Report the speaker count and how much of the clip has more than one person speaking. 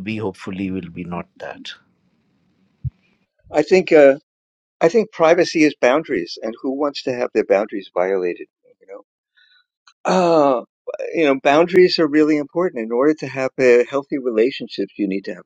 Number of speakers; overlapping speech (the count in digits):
2, no overlap